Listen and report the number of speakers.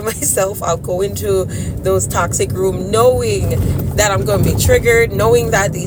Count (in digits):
1